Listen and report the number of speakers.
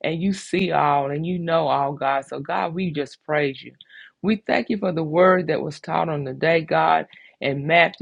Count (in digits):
1